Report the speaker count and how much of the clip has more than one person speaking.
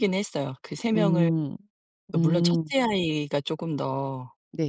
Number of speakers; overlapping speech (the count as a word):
two, about 20%